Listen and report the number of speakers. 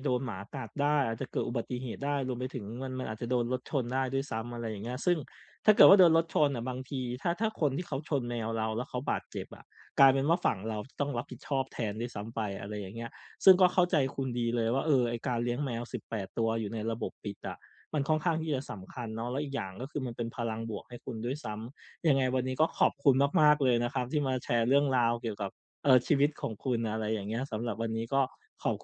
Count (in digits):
1